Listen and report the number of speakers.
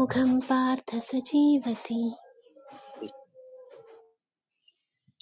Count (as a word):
one